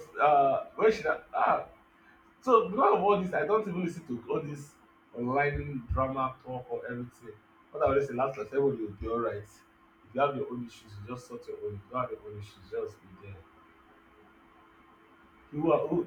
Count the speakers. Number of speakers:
one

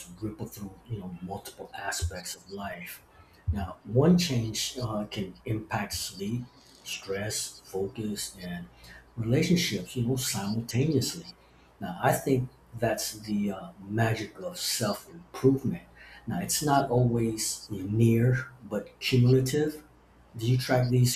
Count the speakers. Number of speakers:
one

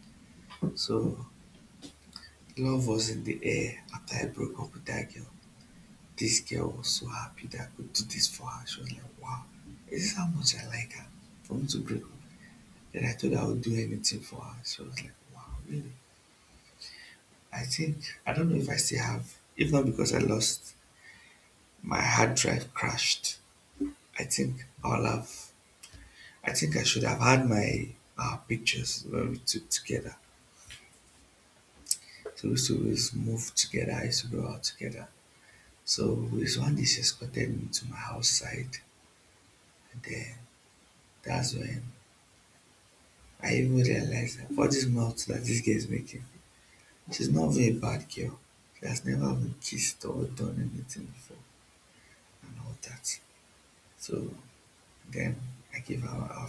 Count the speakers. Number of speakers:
one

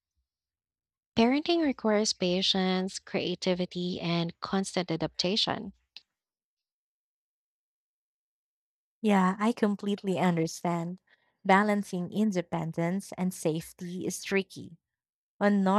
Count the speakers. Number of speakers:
two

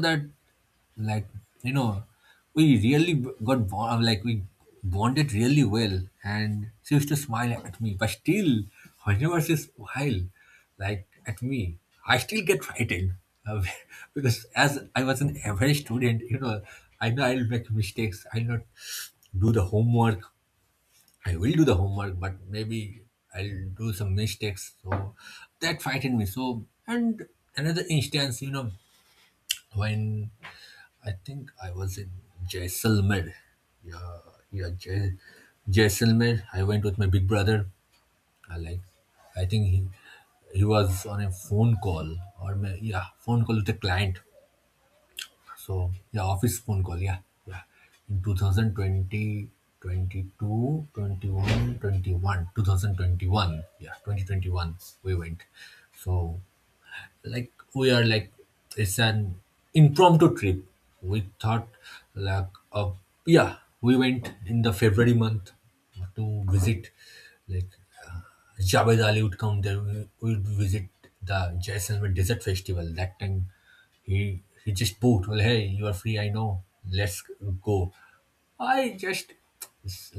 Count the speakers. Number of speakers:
one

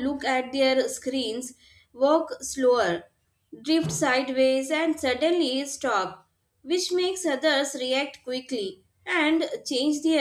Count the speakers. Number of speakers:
one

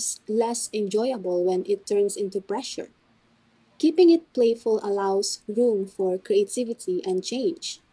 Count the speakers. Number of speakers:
one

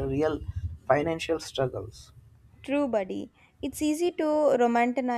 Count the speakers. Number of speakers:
two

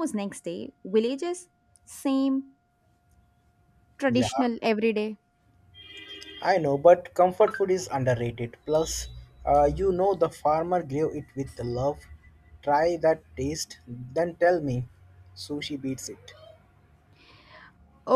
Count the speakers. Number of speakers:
two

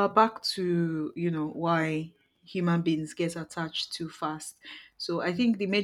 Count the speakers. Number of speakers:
one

